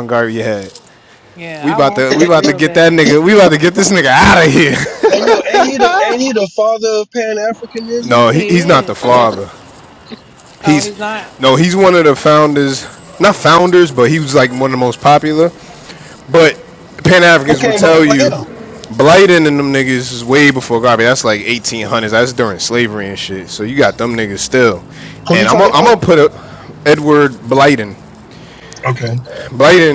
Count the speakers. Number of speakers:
three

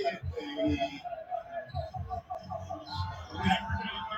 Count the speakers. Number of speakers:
zero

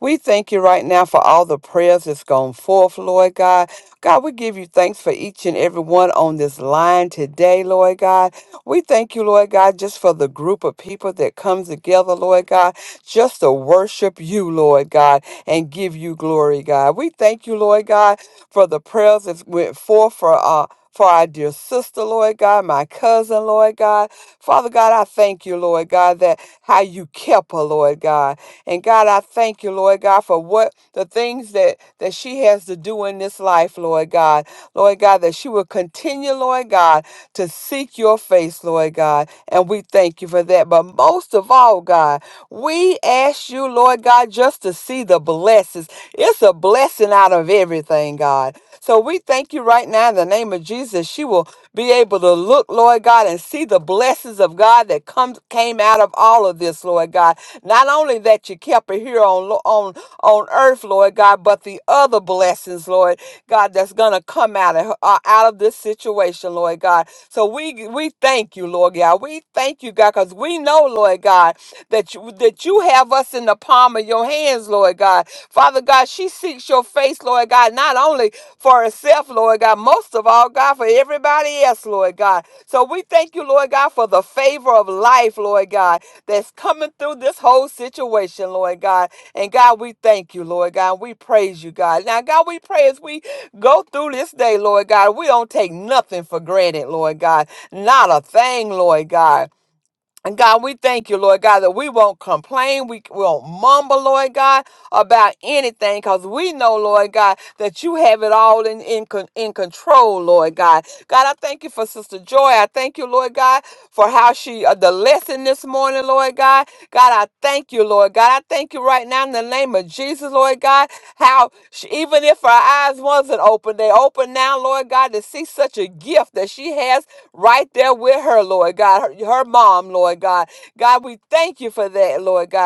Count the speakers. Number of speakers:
one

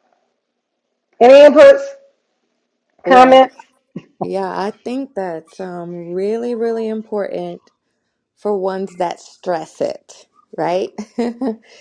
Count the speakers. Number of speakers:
two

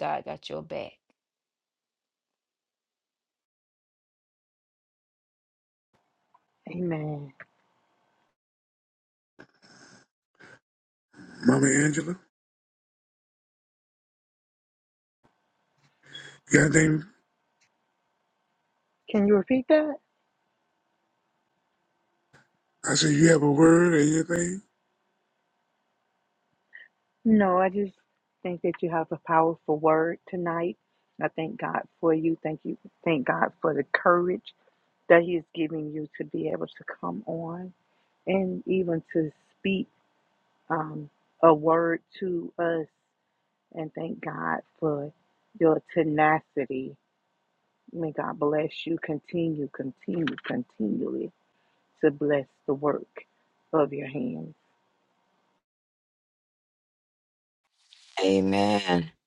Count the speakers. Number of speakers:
three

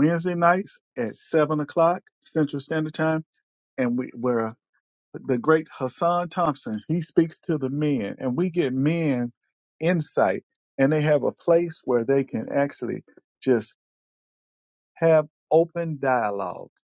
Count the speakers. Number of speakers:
one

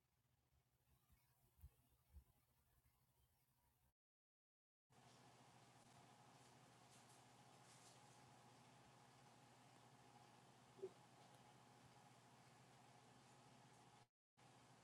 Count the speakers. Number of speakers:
zero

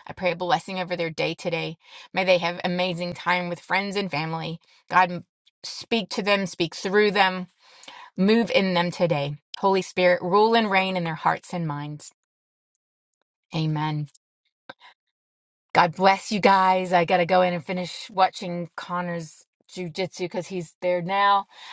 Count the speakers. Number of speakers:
one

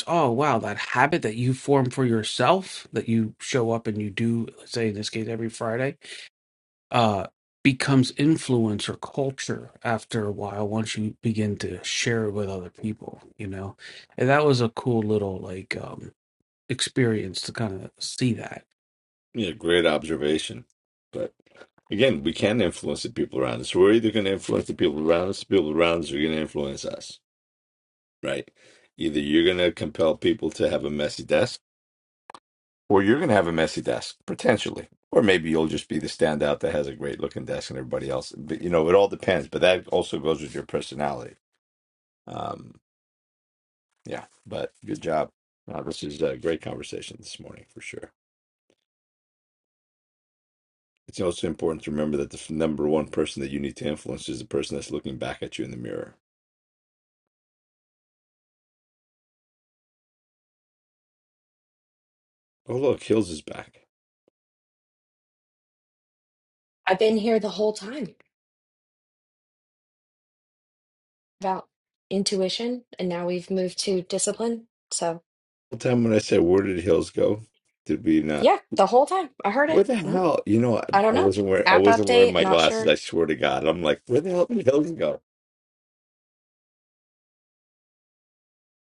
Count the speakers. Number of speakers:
three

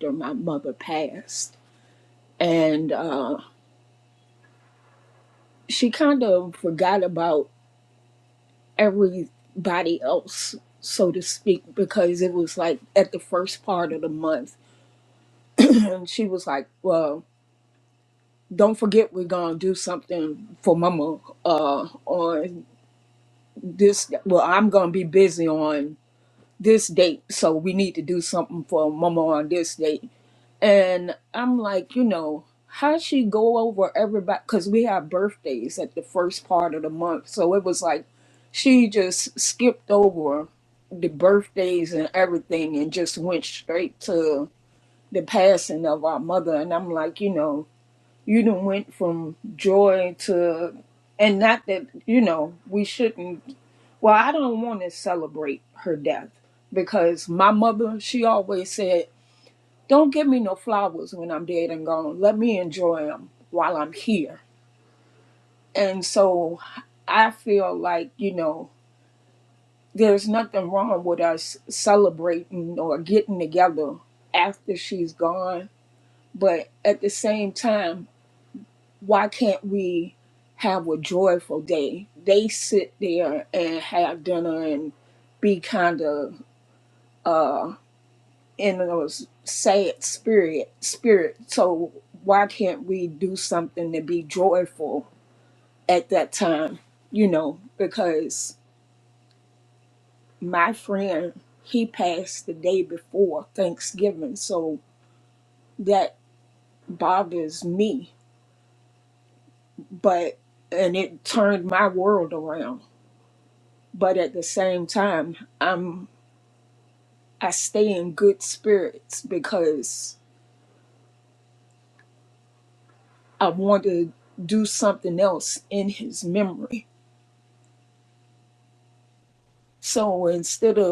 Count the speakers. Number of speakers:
one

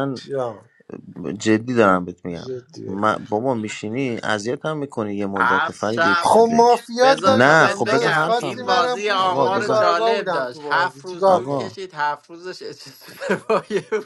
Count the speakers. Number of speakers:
three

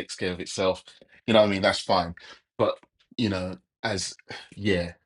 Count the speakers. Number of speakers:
one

